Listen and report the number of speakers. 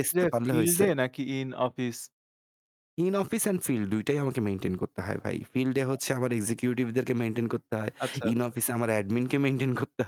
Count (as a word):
two